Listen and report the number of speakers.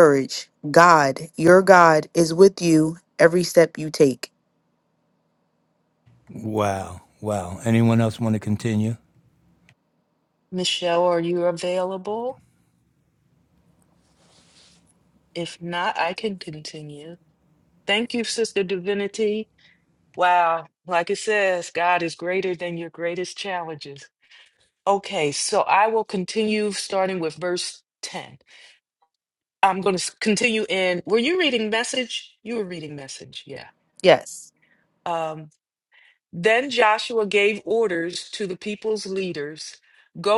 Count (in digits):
3